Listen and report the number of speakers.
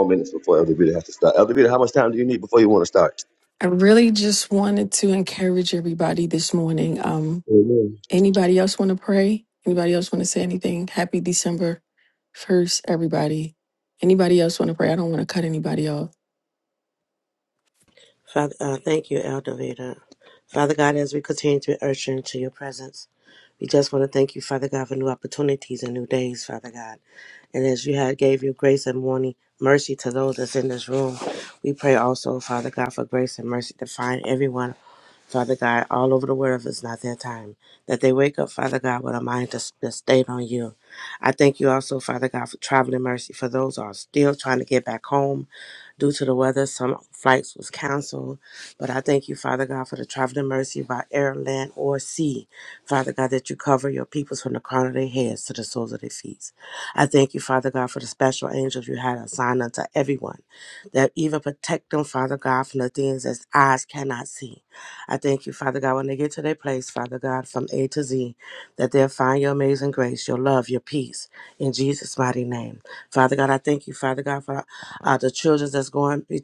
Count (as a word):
three